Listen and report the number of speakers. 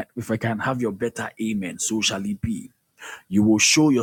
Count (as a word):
one